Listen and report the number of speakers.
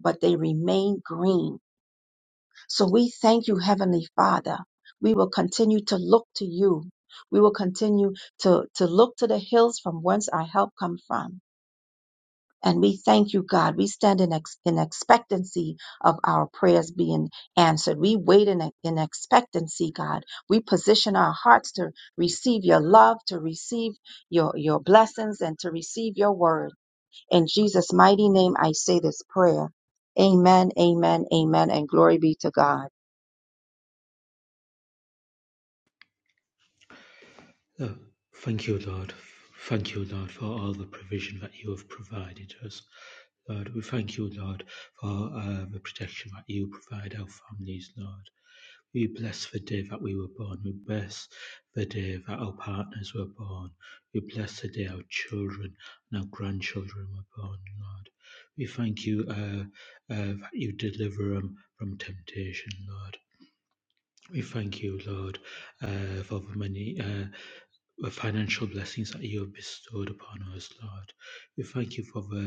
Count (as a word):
two